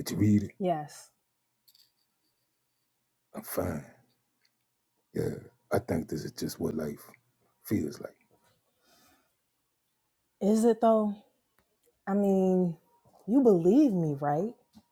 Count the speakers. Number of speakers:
two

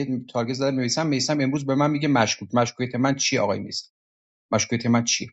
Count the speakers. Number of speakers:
one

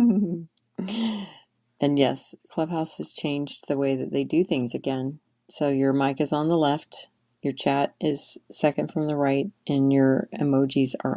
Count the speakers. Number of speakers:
one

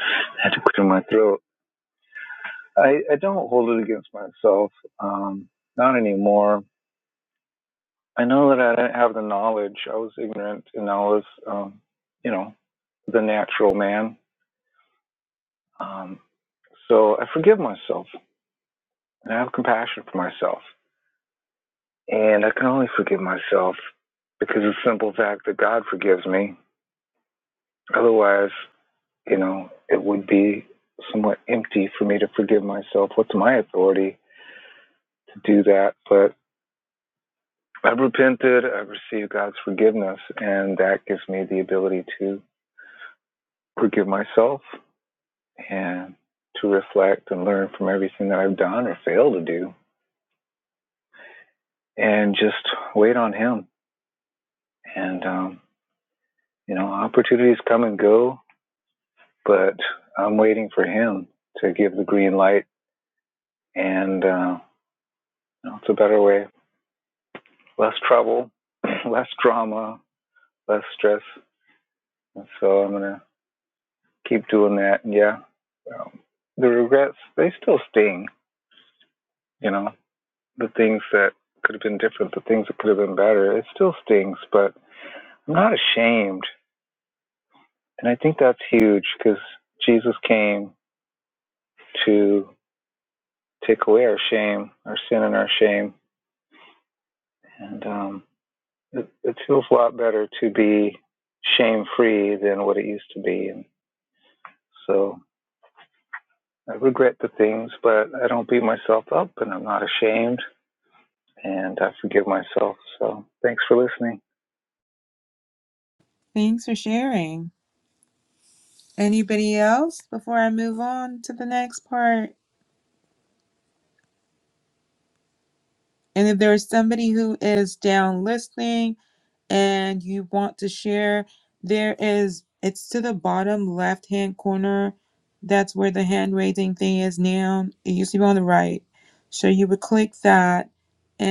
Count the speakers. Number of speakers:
two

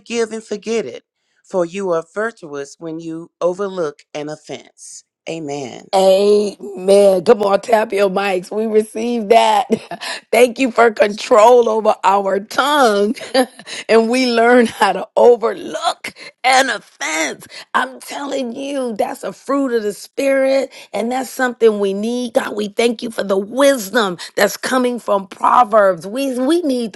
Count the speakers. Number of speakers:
two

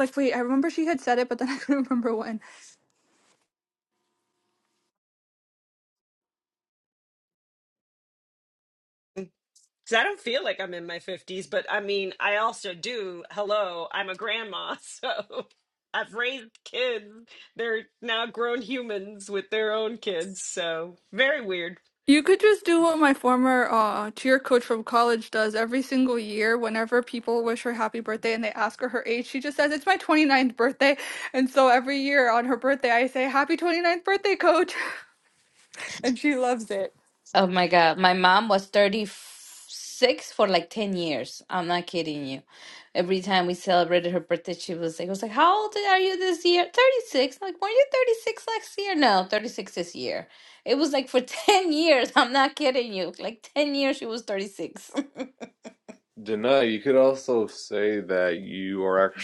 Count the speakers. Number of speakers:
four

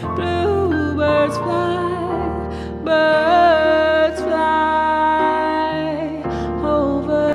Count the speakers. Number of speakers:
one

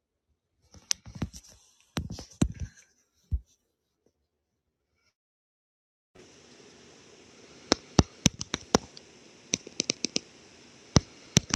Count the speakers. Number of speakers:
zero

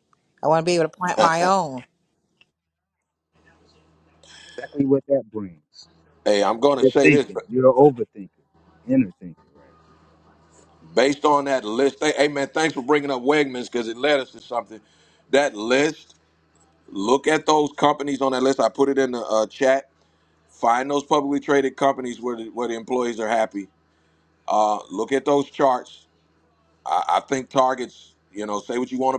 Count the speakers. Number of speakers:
three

